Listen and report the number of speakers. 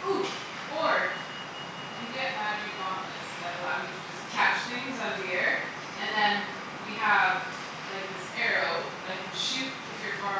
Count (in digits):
1